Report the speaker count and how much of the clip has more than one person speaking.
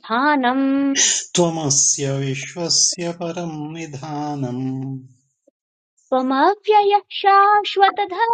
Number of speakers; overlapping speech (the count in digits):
2, no overlap